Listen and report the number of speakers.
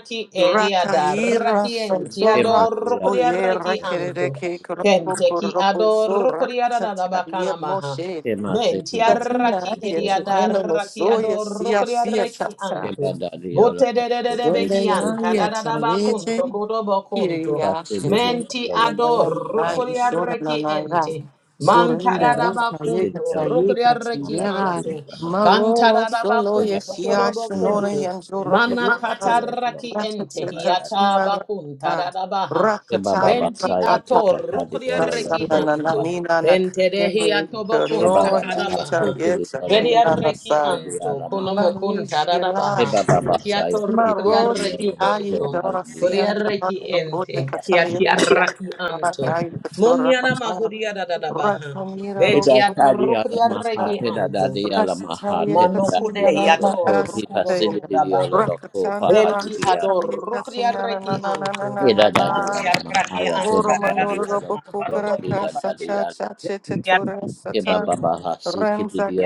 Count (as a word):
three